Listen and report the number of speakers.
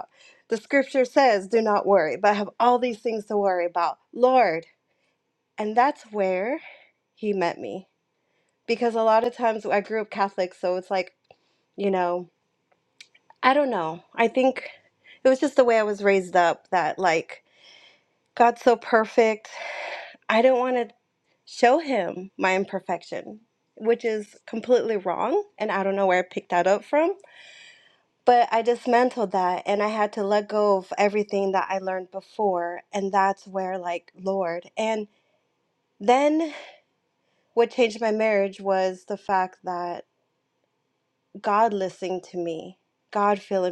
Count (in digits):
1